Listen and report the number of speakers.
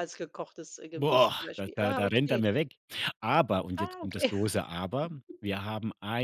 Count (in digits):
2